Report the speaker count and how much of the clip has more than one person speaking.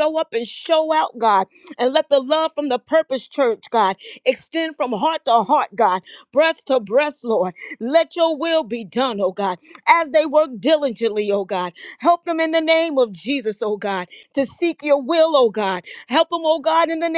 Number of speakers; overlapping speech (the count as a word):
one, no overlap